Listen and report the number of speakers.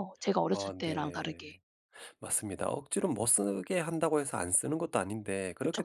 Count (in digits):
2